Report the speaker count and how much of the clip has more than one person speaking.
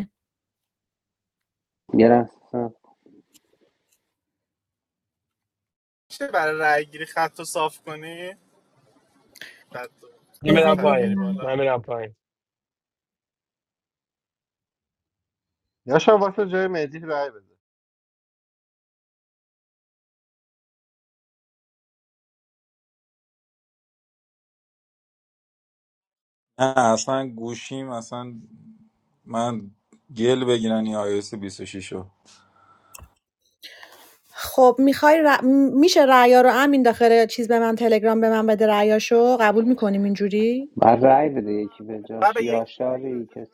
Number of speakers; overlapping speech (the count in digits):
6, about 4%